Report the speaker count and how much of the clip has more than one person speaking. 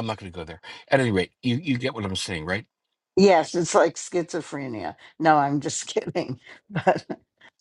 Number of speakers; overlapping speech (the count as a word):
two, no overlap